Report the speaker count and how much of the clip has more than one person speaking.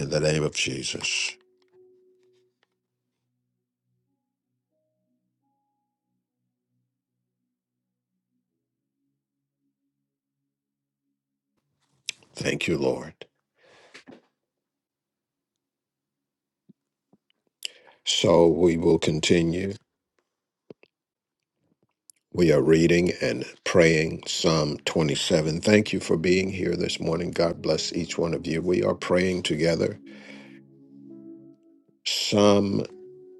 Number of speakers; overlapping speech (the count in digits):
1, no overlap